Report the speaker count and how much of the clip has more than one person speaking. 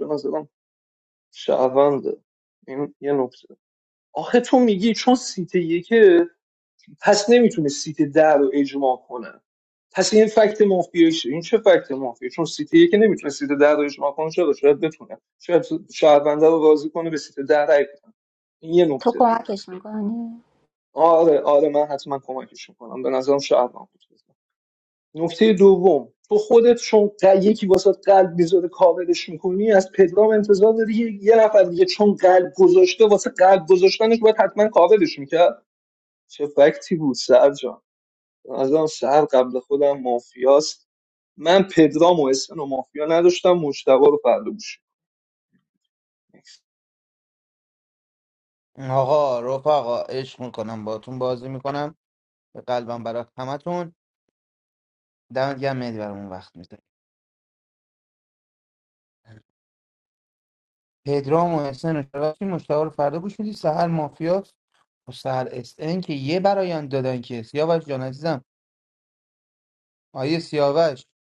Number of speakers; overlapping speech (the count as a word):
three, under 1%